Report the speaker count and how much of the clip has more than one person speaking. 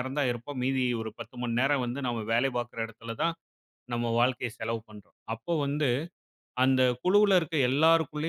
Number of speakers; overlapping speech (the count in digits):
1, no overlap